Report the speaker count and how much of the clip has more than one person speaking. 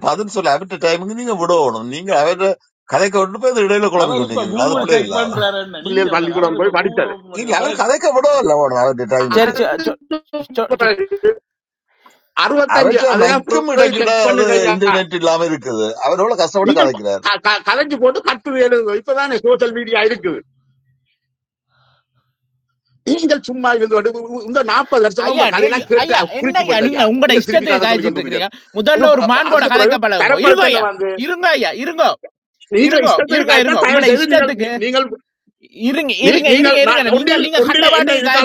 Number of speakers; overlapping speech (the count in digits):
4, about 40%